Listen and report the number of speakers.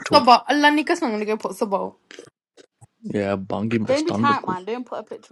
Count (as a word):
three